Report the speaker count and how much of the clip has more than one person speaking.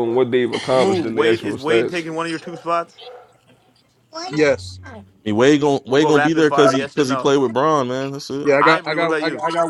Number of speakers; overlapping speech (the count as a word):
four, about 35%